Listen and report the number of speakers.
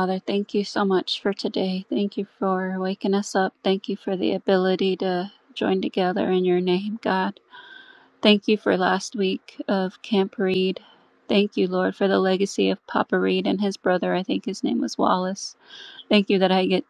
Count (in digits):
1